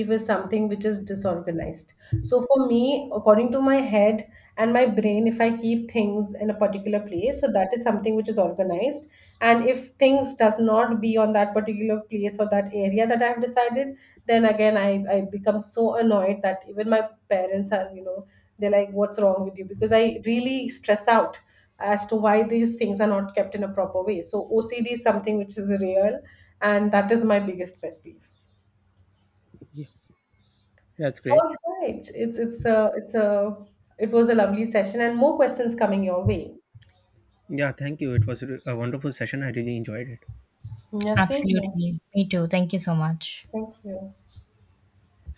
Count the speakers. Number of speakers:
3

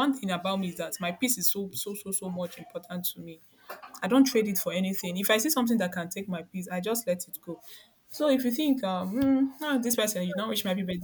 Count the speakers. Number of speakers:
1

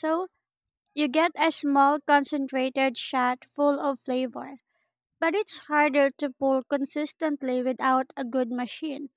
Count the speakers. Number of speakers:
1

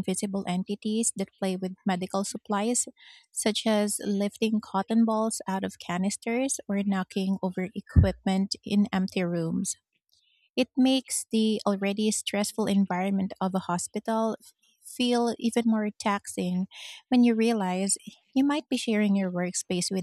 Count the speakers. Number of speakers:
1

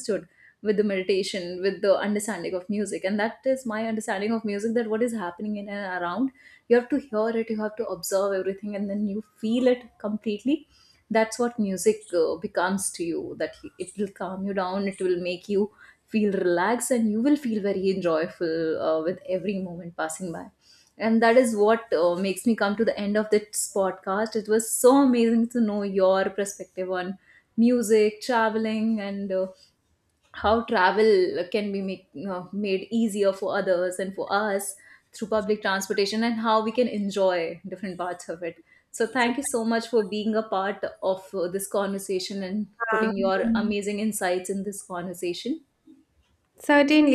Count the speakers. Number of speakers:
2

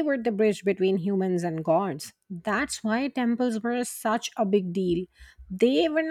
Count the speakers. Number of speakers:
1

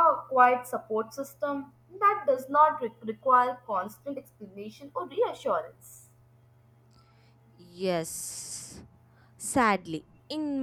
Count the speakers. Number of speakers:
2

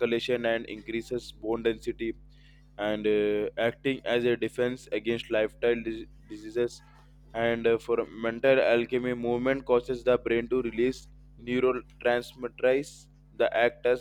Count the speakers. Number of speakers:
1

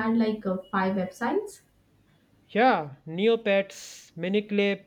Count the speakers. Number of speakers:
2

